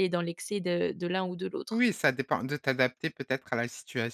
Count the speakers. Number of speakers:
2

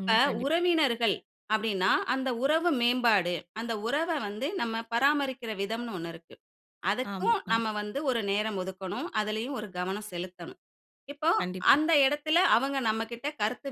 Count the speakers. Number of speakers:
2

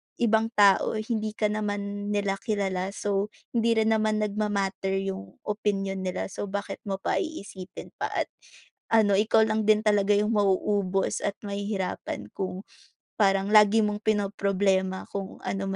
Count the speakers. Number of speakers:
1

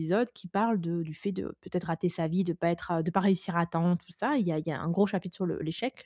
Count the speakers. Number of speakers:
1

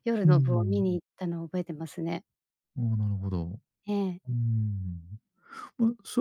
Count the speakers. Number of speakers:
2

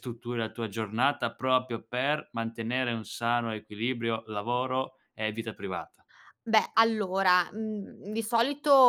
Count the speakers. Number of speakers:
2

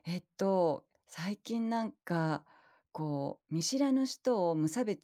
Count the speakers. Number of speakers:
1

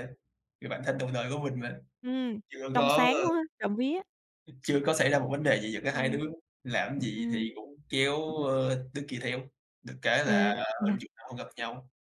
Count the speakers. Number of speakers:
2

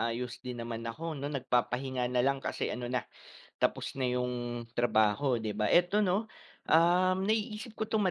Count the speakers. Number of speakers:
1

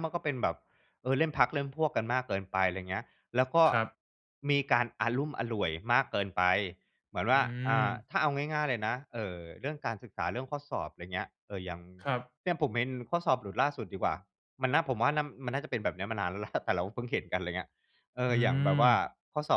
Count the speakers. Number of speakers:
2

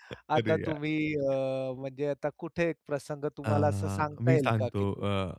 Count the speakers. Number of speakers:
2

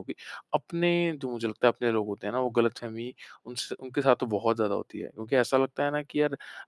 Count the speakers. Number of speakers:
1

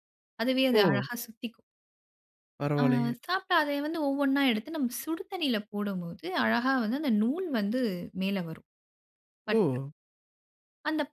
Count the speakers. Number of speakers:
2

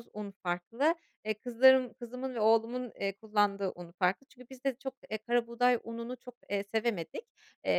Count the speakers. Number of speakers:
1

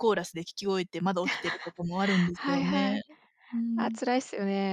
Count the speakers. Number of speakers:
2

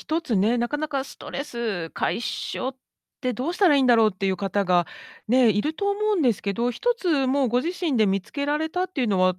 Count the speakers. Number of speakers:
1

